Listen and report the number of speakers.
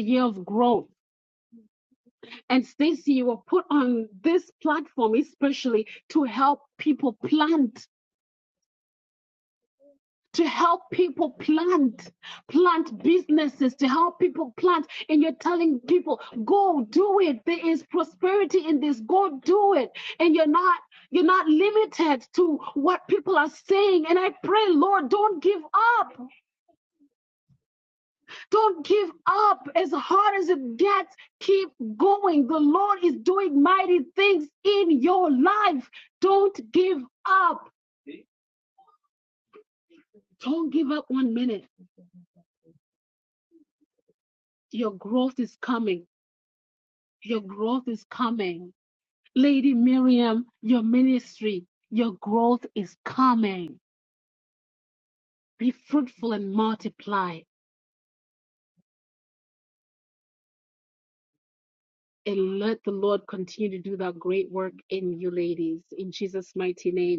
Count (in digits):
1